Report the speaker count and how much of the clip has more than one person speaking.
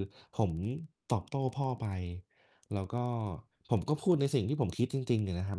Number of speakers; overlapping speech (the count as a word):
one, no overlap